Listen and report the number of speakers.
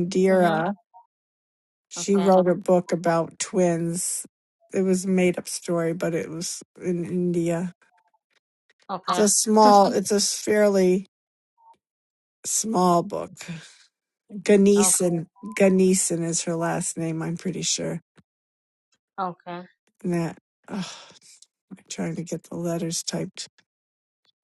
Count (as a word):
two